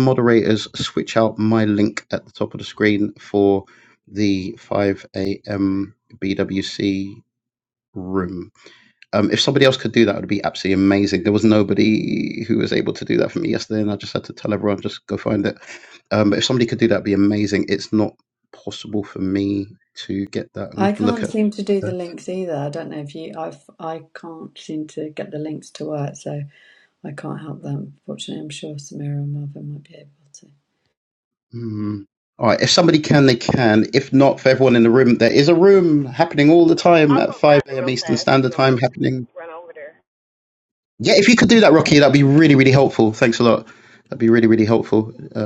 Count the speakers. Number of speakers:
three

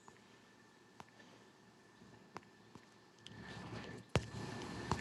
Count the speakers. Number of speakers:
zero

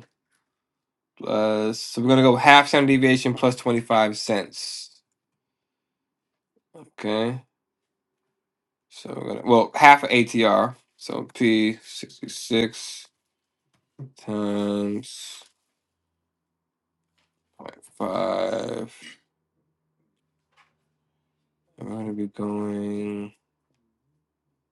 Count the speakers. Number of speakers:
one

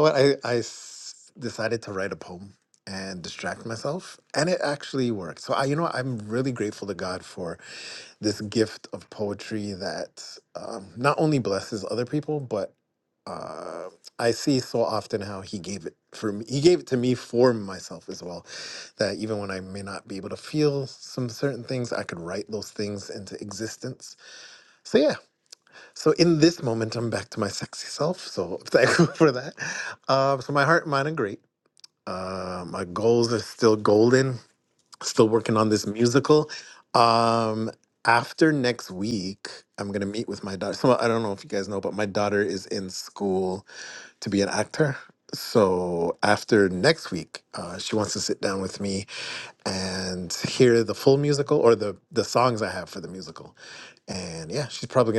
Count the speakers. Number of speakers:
one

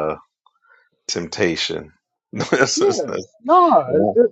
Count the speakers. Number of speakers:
two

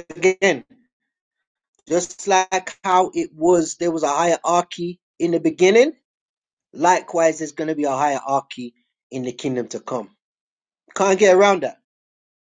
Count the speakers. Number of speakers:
one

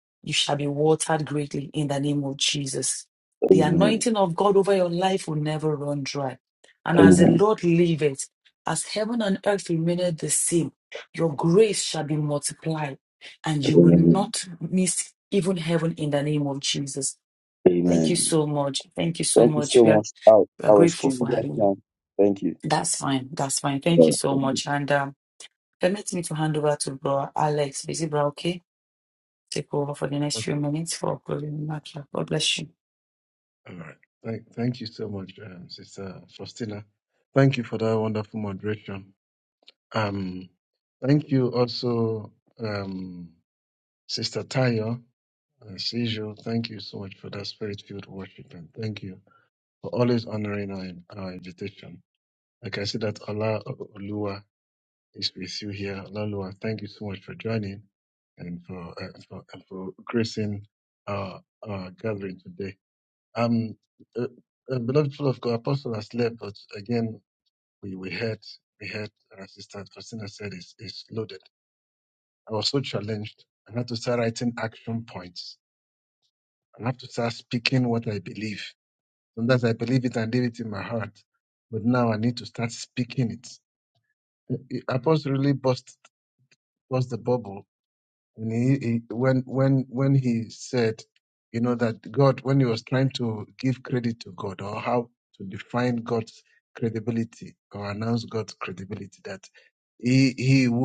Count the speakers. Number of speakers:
three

